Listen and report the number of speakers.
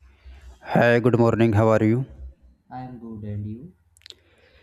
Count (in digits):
2